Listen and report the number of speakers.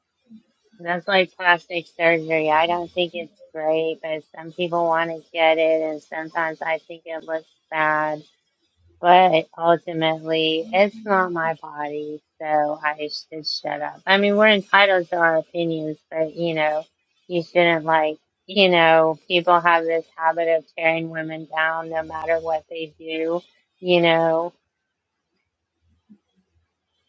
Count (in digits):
1